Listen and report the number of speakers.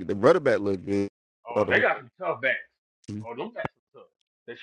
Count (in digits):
2